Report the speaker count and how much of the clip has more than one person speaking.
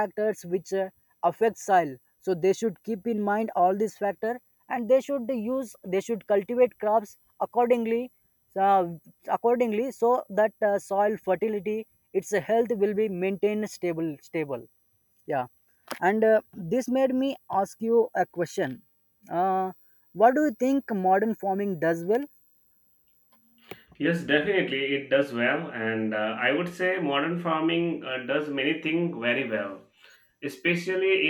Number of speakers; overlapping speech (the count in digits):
2, no overlap